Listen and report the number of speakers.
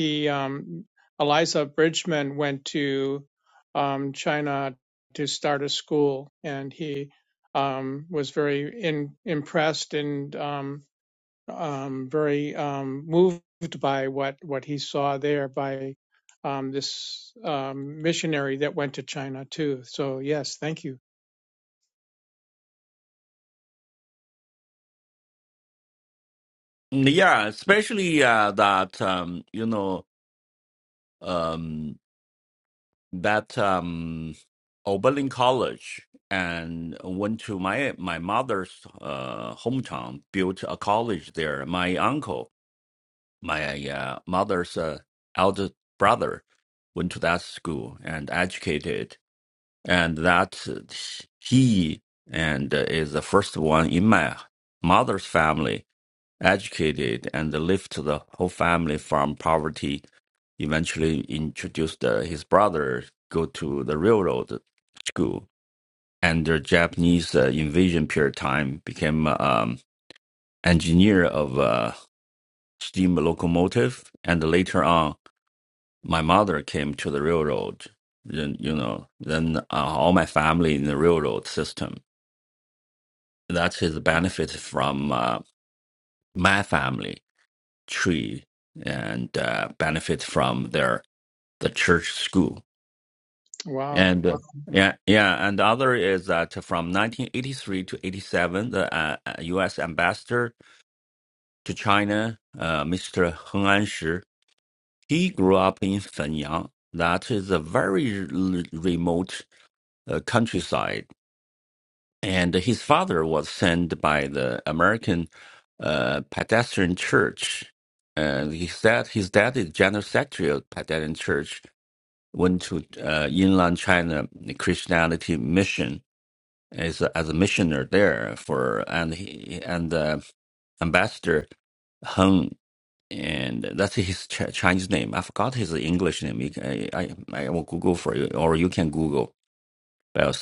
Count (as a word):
two